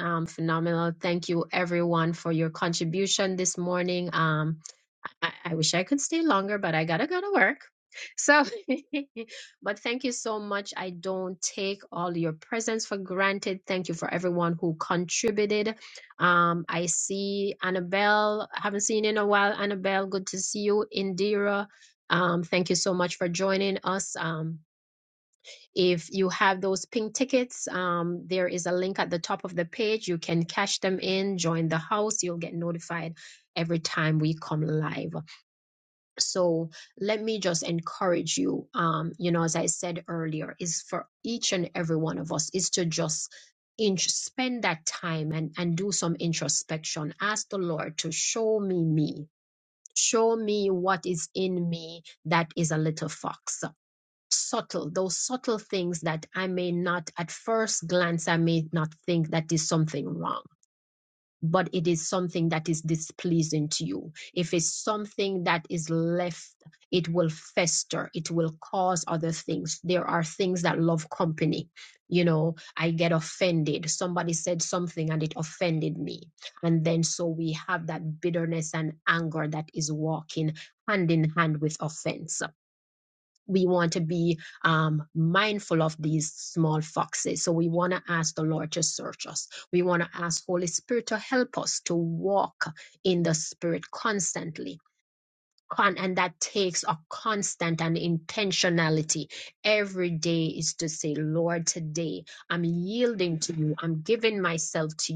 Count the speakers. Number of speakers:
1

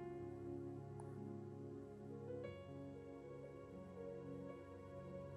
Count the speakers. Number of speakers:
0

